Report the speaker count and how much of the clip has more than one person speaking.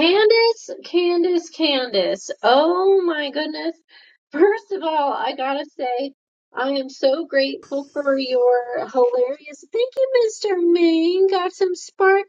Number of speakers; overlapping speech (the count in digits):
1, no overlap